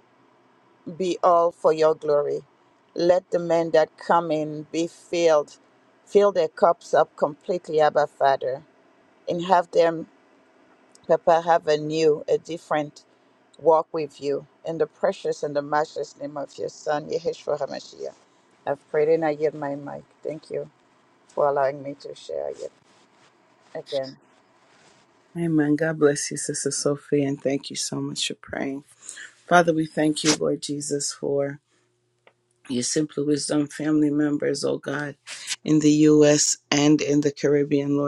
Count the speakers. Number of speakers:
2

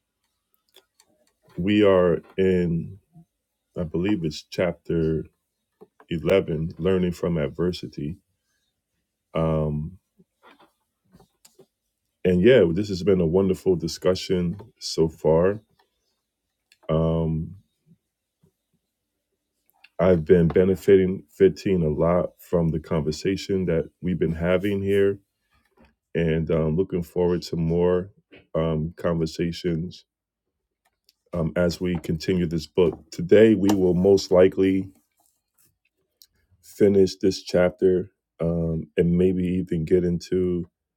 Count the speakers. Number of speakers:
1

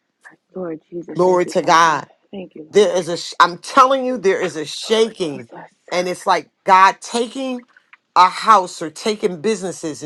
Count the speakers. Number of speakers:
2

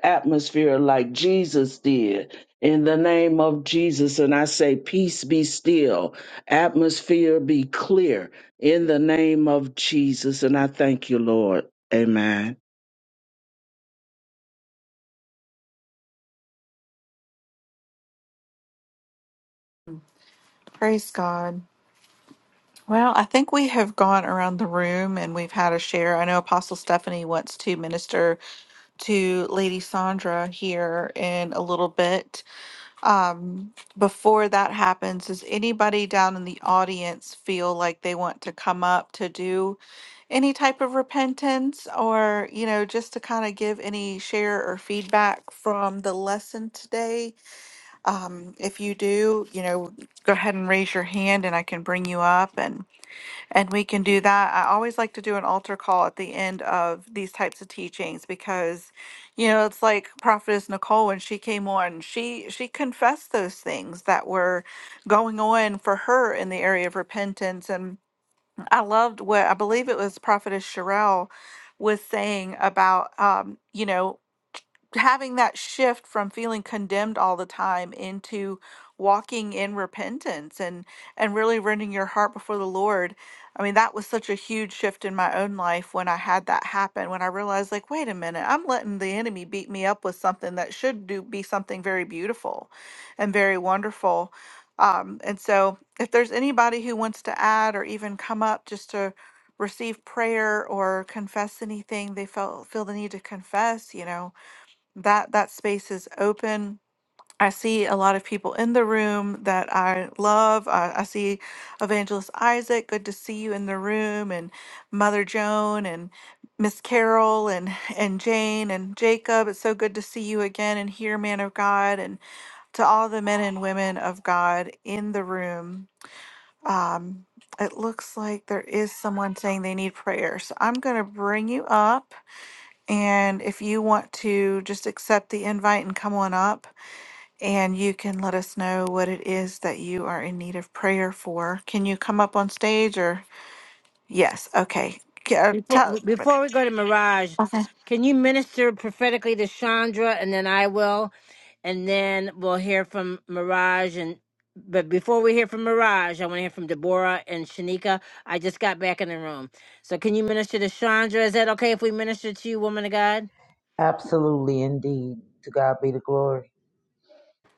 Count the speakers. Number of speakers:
4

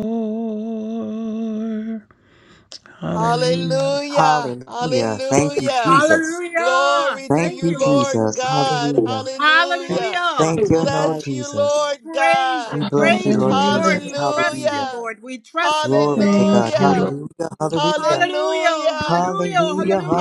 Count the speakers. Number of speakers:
4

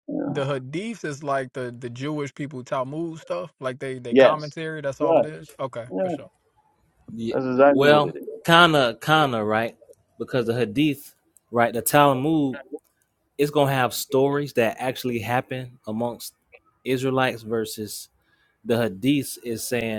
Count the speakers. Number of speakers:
3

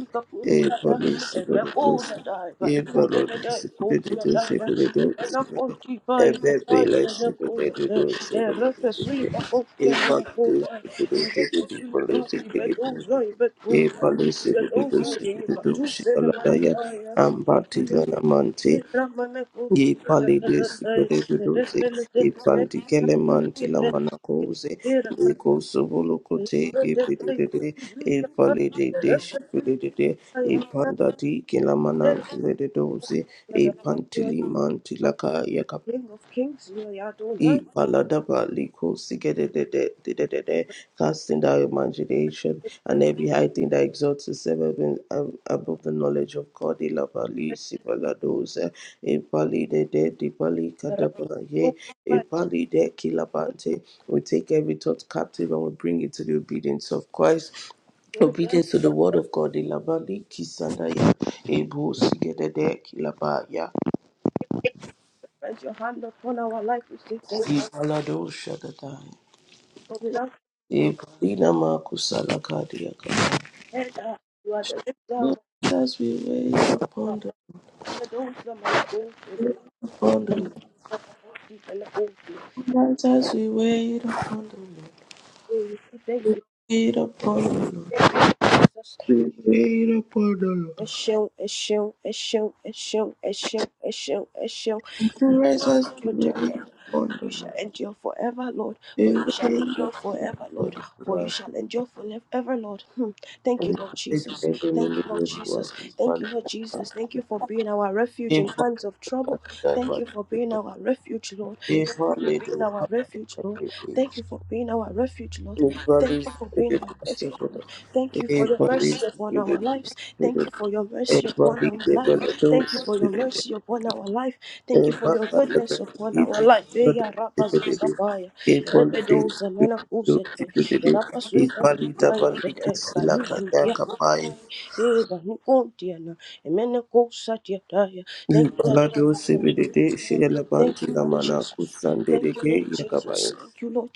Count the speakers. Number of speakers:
2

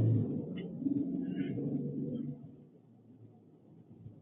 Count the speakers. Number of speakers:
0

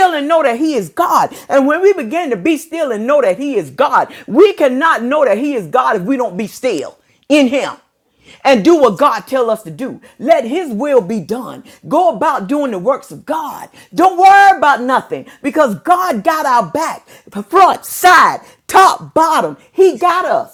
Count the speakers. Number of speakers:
1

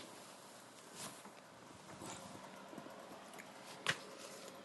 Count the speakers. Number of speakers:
0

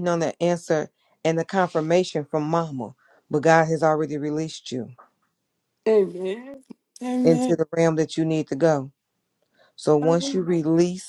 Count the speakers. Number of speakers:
2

